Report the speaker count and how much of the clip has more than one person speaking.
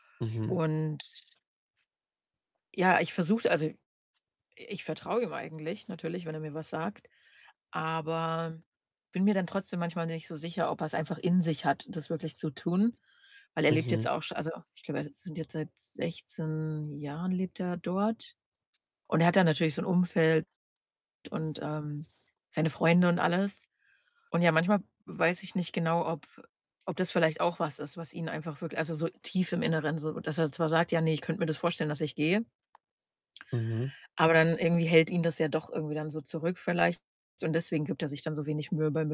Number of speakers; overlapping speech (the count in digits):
2, about 1%